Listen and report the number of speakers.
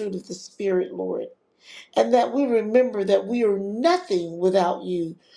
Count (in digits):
1